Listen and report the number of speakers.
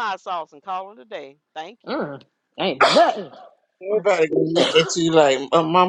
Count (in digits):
3